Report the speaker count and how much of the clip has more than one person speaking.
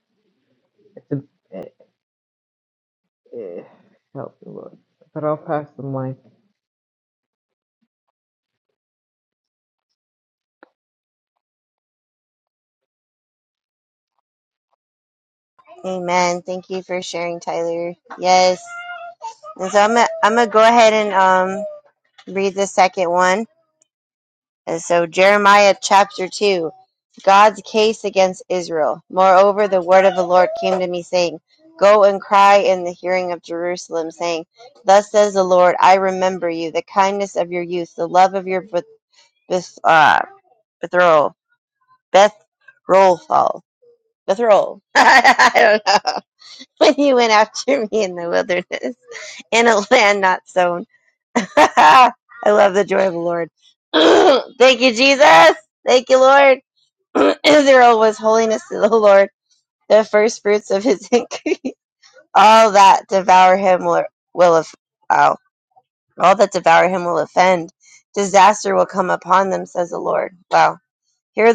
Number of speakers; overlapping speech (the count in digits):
2, no overlap